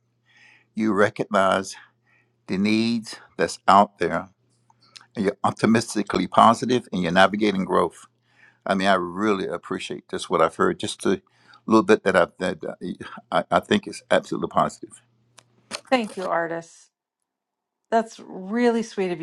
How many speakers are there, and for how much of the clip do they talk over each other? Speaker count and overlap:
2, no overlap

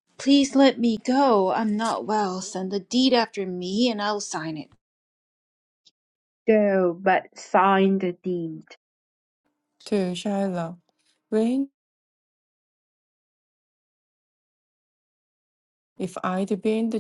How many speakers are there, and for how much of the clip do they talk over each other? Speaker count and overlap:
3, no overlap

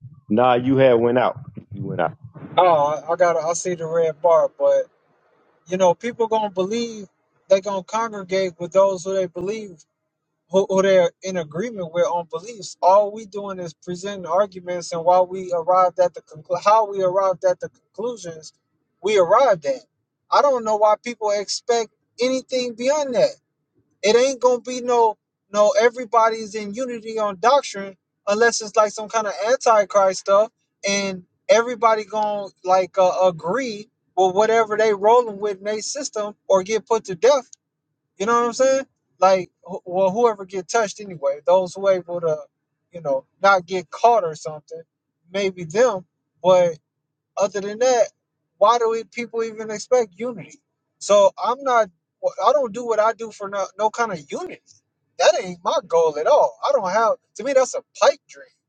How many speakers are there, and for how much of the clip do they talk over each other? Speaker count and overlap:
2, no overlap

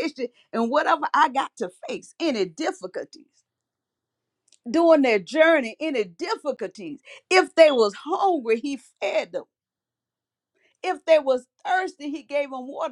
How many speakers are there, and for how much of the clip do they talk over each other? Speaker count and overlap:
1, no overlap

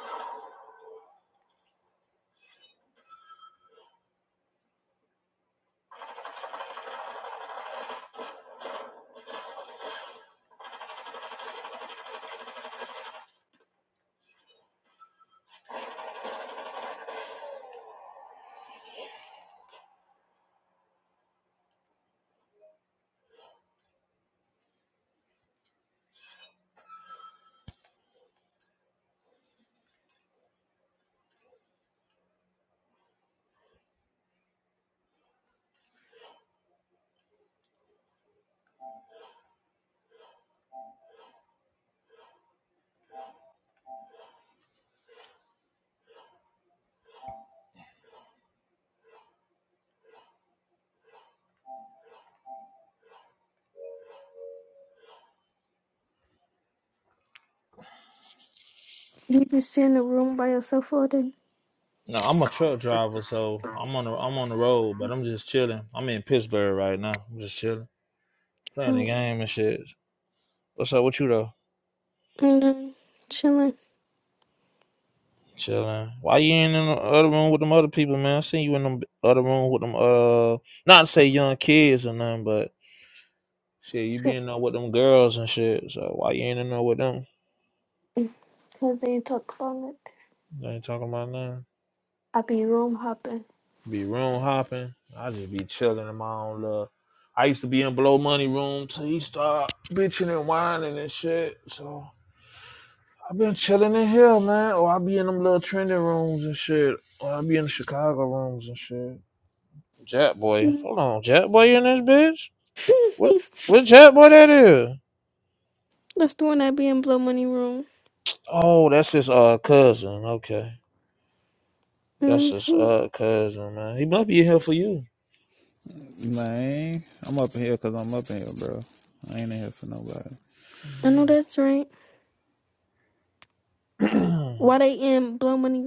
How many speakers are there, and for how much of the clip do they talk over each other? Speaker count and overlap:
3, about 1%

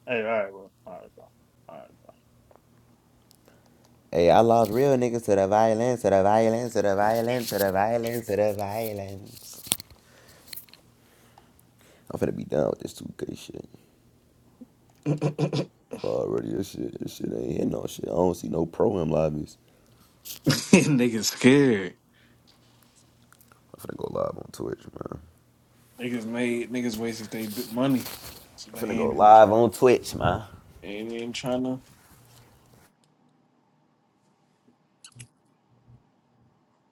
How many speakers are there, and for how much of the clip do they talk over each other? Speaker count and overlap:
3, about 2%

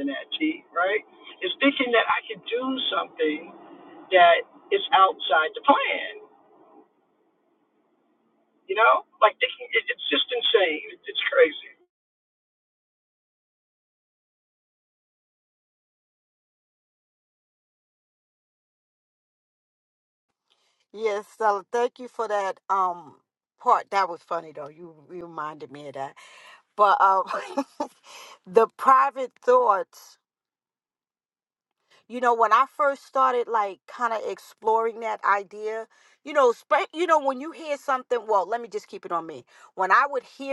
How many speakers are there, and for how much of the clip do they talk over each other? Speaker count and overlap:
2, no overlap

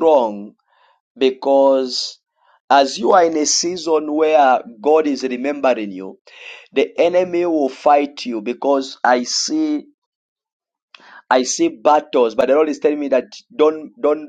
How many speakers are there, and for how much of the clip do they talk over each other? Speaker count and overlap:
1, no overlap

